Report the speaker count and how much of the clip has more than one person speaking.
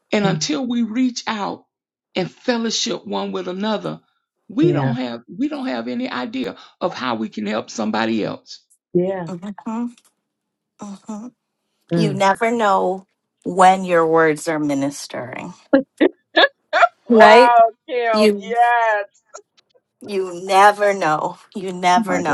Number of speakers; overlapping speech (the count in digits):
3, about 8%